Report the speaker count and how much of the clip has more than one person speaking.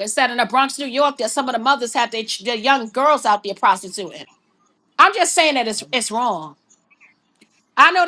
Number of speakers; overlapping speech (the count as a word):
one, no overlap